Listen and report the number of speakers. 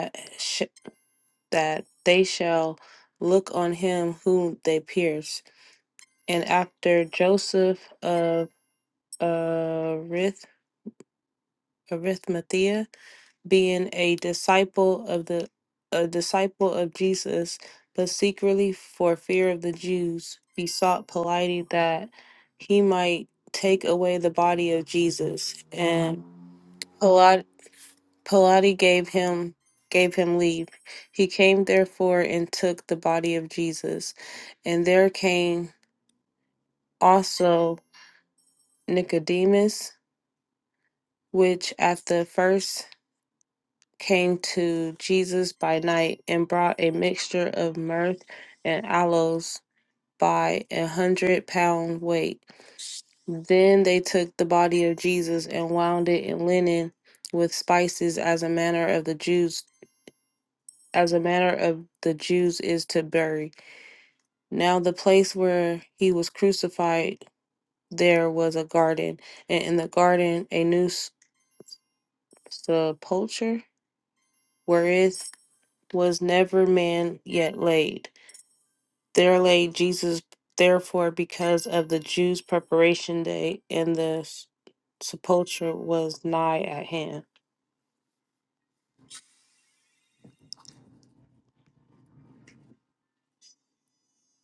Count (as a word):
one